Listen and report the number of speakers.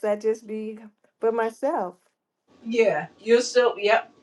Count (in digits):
2